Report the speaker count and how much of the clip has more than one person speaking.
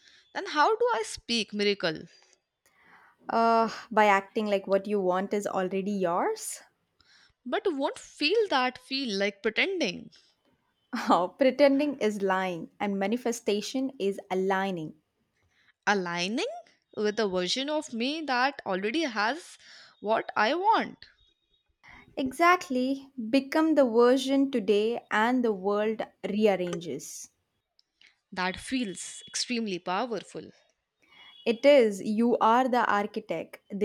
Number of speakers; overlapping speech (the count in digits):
2, no overlap